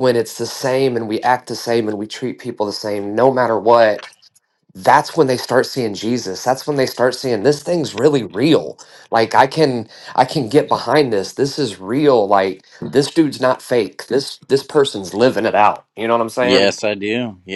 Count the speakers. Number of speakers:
two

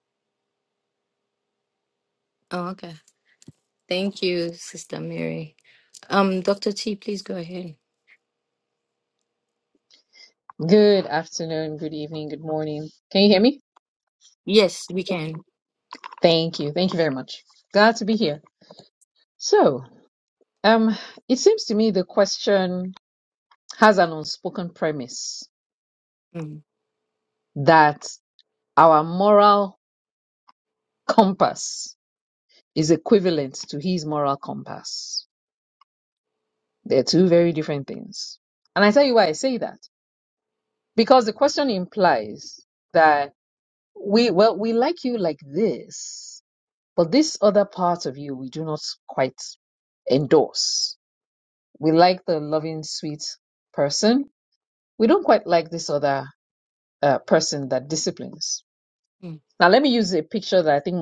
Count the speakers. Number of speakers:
two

